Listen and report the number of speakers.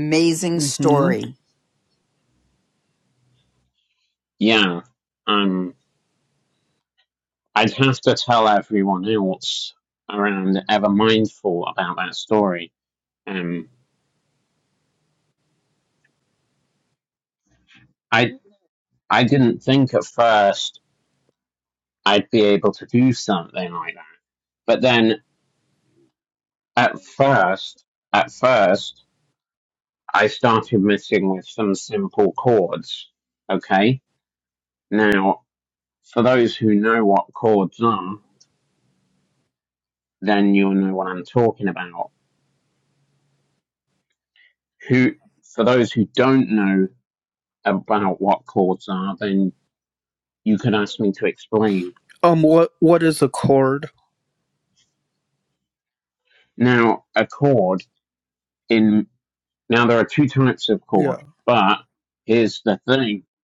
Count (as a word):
three